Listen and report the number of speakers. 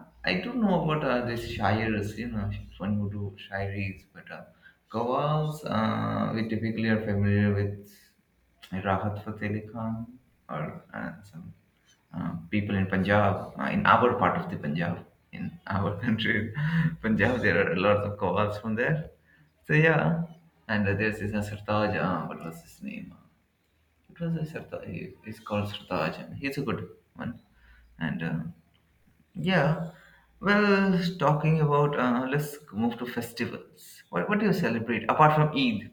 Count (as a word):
one